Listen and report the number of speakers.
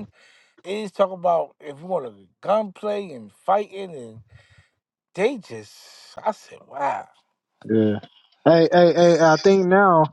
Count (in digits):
2